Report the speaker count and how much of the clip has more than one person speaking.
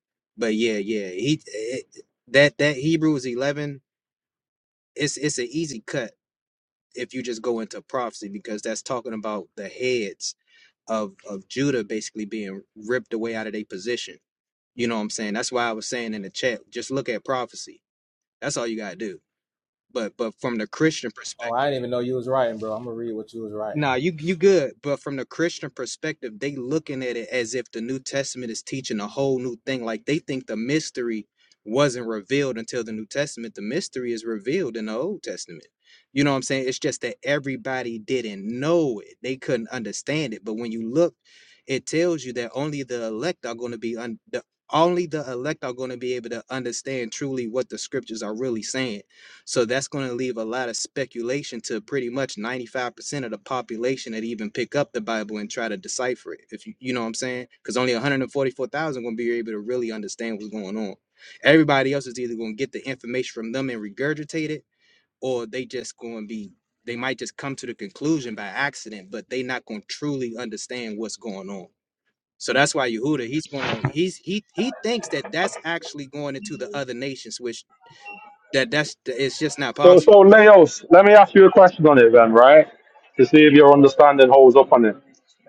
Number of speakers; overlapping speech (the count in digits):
3, under 1%